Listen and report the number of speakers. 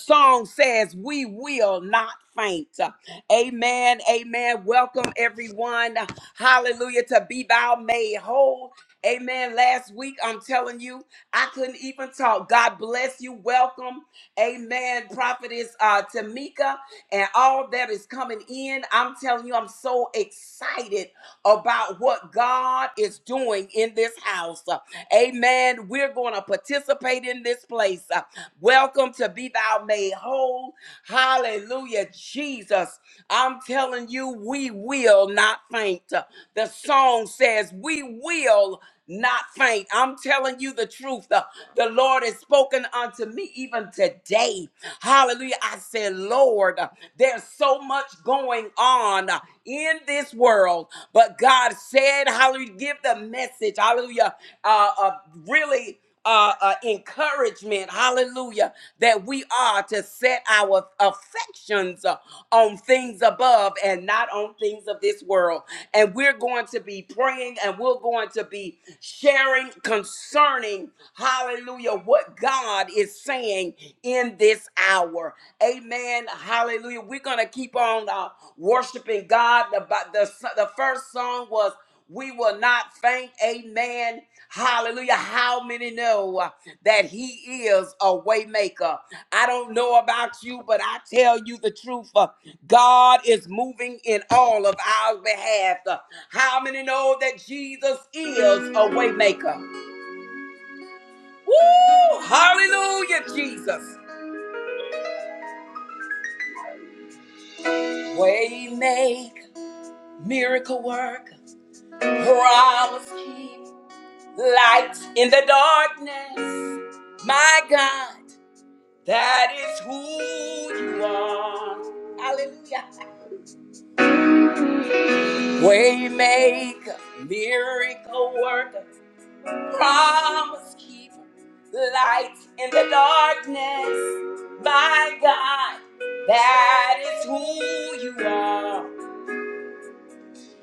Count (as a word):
one